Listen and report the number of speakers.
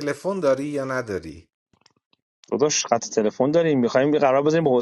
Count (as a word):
two